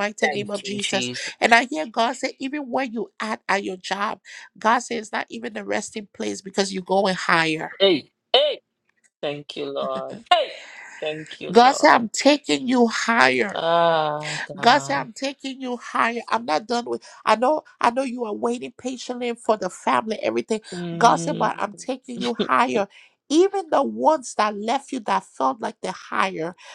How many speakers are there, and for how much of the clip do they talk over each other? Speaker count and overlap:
two, about 10%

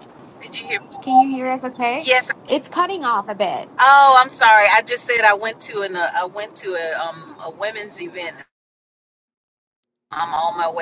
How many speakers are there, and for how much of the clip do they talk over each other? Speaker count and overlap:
two, about 1%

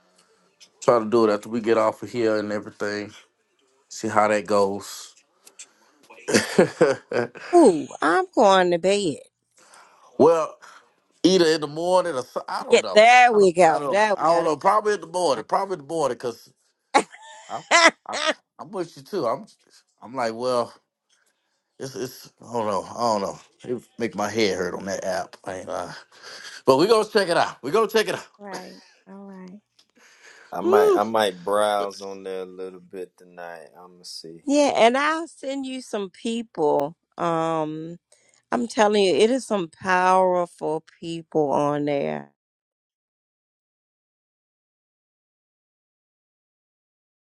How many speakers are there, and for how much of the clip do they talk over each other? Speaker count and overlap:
three, about 4%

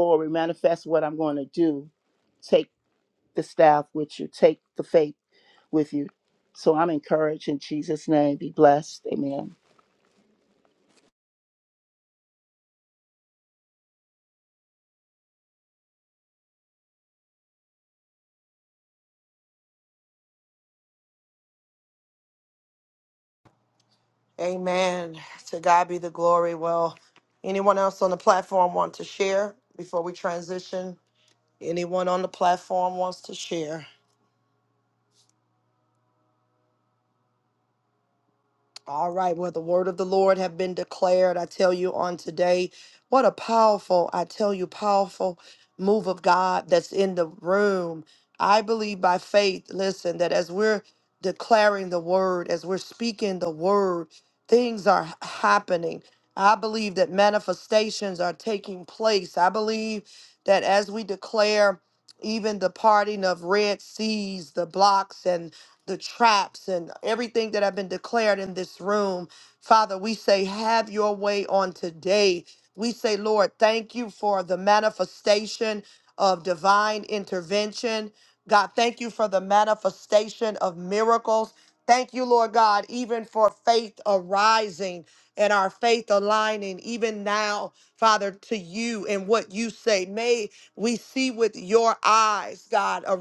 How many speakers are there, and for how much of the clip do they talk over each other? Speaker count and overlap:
two, no overlap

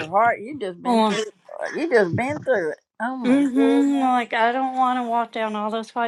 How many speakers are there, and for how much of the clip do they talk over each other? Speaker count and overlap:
two, about 20%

